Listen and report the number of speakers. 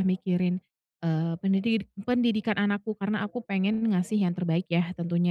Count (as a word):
one